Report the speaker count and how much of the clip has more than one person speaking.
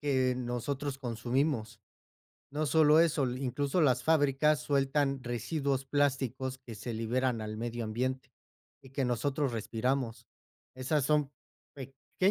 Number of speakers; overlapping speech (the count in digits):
1, no overlap